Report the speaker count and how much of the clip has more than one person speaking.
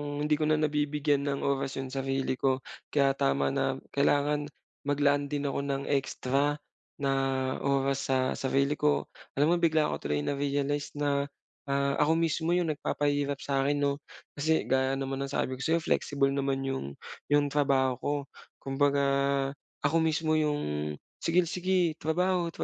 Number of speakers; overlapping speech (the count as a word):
one, no overlap